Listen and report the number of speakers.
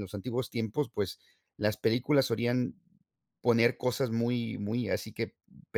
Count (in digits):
1